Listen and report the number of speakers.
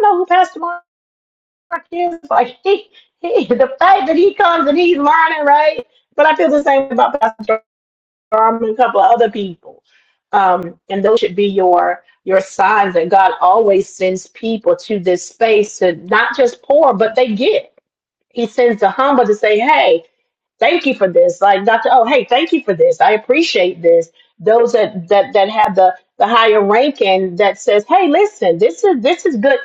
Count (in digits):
1